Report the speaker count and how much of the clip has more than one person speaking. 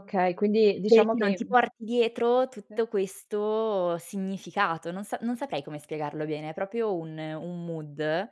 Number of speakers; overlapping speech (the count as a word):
two, about 9%